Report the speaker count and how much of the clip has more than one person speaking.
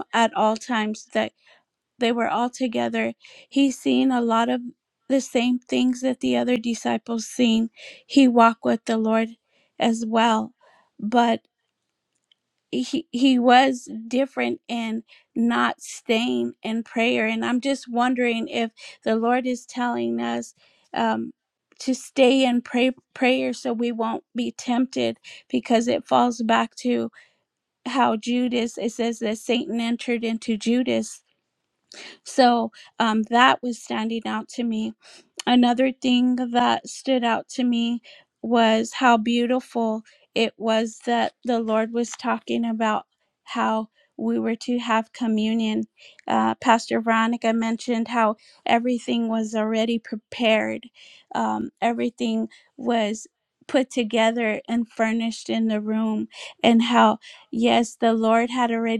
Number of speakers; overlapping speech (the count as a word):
one, no overlap